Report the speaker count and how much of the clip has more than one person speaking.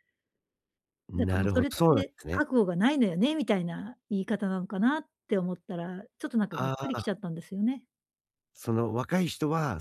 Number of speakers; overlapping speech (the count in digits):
2, about 19%